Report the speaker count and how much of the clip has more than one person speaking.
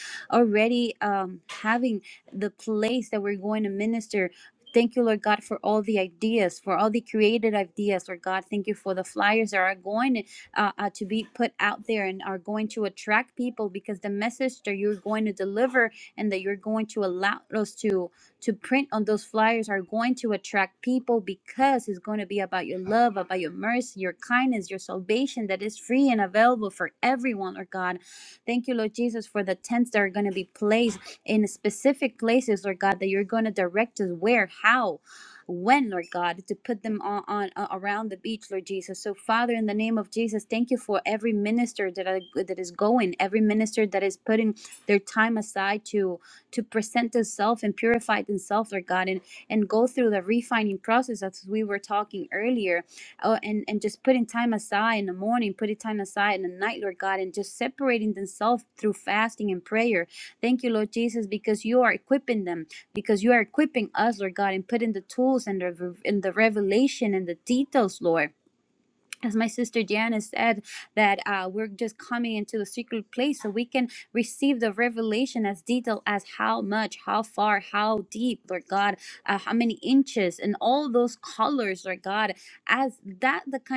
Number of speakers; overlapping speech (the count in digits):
1, no overlap